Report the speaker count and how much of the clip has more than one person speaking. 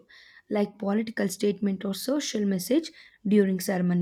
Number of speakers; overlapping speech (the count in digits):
1, no overlap